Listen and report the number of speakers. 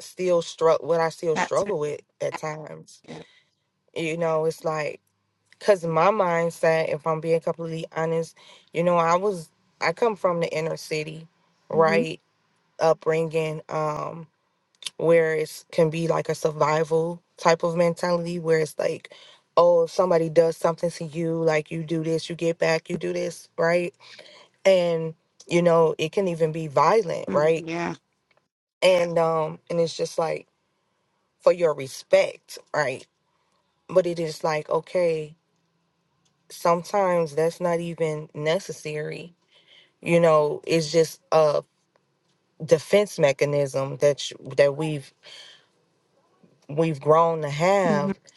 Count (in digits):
2